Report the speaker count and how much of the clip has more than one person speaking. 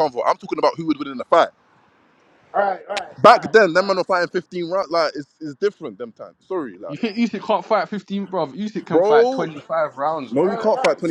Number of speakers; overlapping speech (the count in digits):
3, about 22%